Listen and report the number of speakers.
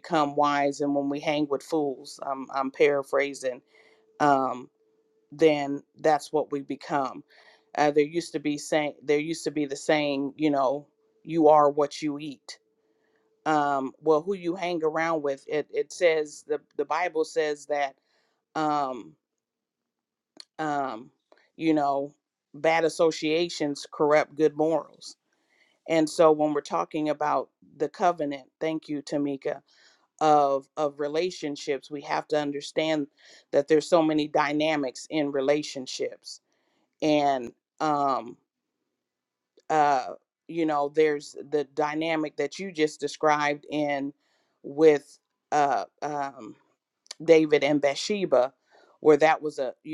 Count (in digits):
1